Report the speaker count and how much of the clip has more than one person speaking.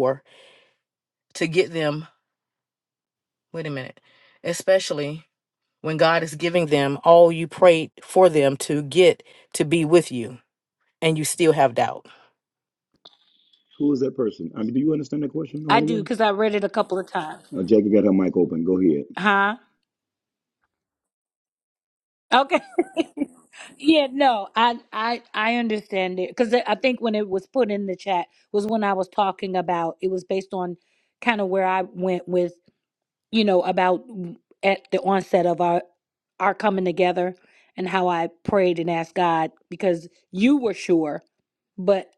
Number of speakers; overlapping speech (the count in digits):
3, about 1%